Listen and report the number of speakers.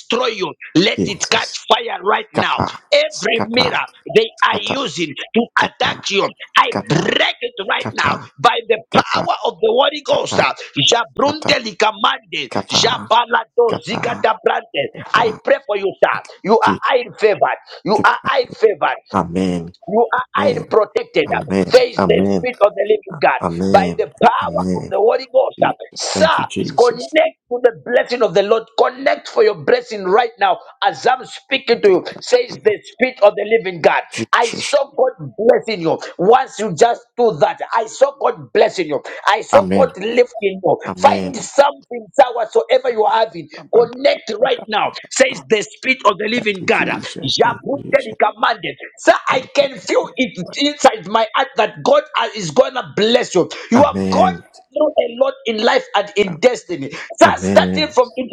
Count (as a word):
two